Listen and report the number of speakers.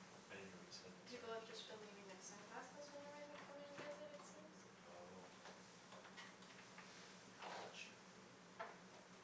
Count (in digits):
2